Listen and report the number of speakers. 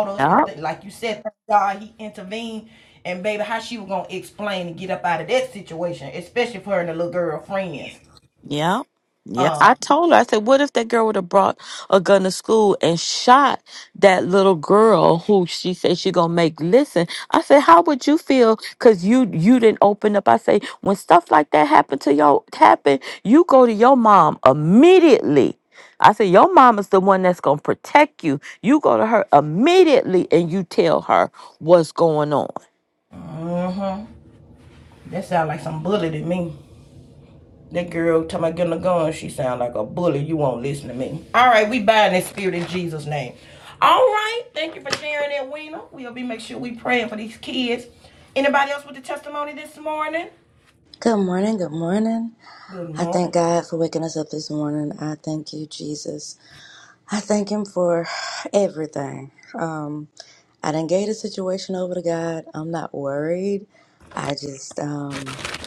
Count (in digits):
3